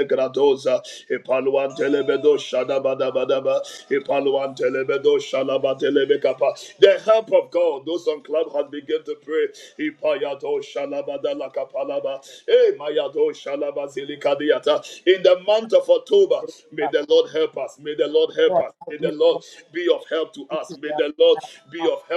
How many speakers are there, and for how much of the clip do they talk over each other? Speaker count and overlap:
1, no overlap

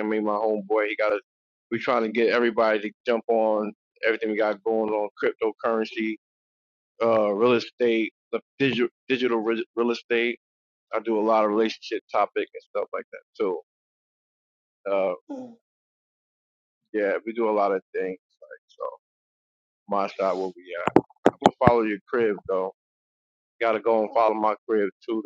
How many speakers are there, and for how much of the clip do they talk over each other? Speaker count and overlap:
1, no overlap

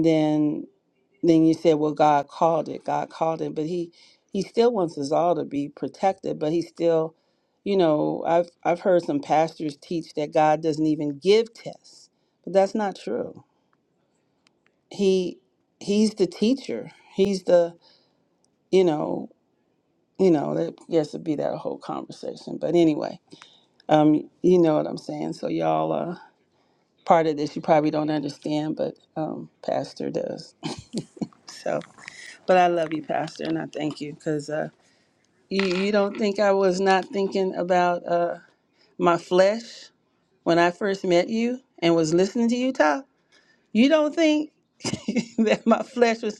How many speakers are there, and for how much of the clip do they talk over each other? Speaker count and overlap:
1, no overlap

